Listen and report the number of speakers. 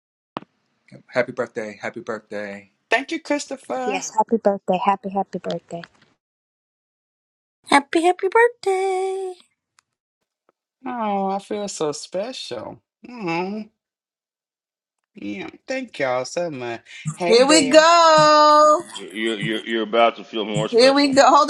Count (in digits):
6